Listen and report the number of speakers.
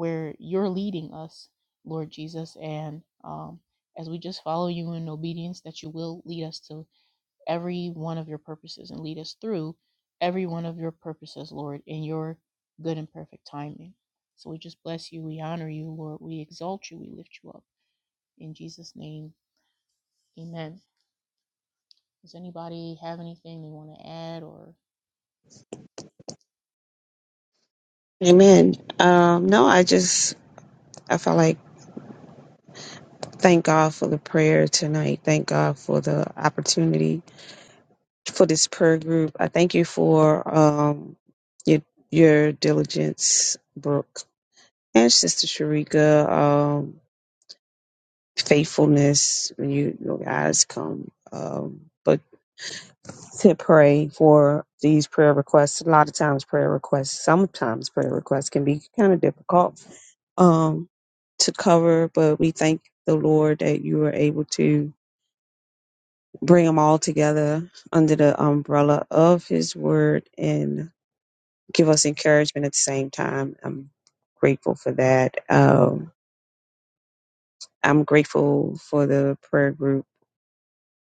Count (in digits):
2